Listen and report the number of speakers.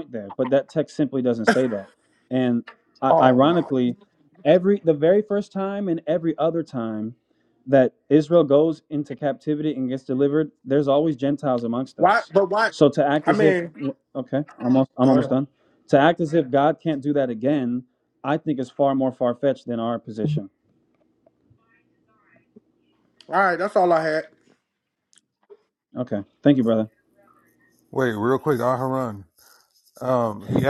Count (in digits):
3